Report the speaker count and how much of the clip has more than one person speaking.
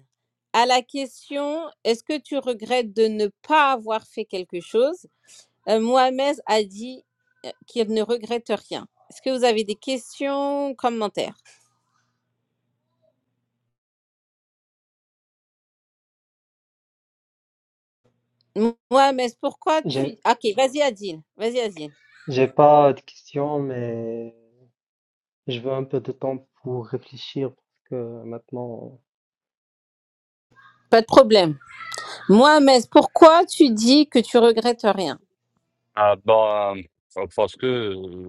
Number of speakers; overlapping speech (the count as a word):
three, about 1%